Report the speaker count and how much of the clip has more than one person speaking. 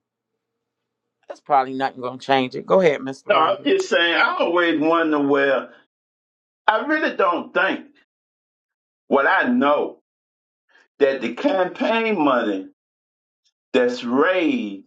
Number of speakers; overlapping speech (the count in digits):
2, about 4%